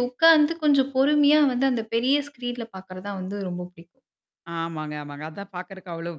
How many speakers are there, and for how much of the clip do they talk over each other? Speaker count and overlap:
two, no overlap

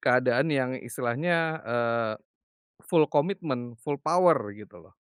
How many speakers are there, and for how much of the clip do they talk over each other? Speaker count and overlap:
one, no overlap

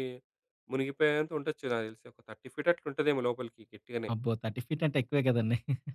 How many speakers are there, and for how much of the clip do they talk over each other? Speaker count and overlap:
two, about 1%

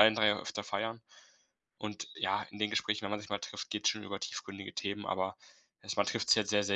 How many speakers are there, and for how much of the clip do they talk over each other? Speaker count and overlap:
one, no overlap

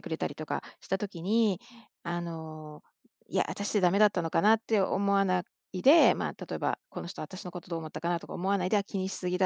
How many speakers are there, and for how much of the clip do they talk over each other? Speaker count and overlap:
one, no overlap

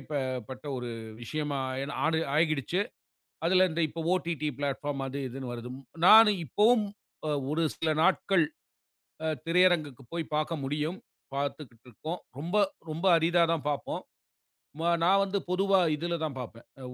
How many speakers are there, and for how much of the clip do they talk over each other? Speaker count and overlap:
one, no overlap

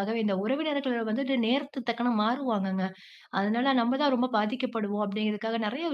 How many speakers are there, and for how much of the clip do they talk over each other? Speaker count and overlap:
one, no overlap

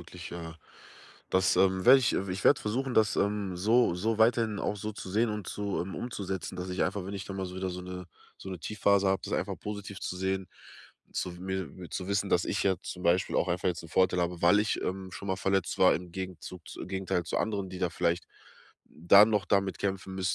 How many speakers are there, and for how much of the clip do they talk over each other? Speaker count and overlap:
one, no overlap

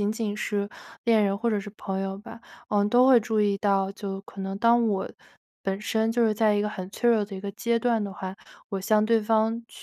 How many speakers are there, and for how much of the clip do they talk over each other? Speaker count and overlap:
one, no overlap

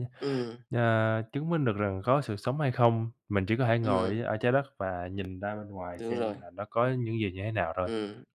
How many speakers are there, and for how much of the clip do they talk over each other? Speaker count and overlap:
two, about 10%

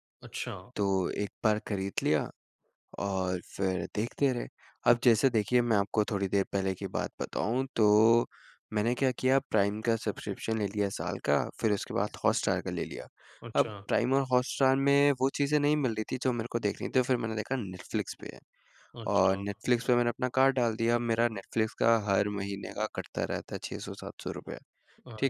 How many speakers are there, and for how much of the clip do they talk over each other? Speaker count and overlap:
two, about 3%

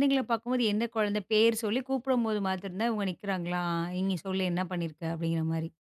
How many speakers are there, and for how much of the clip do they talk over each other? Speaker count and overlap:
one, no overlap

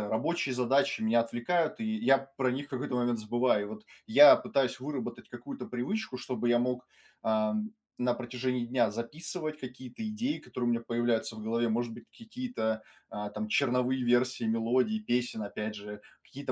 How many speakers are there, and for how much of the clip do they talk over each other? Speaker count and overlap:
one, no overlap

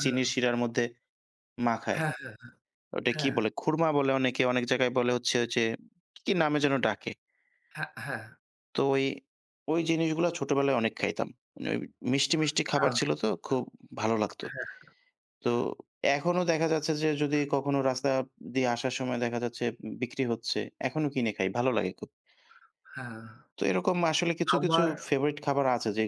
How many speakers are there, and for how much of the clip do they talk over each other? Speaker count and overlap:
two, about 5%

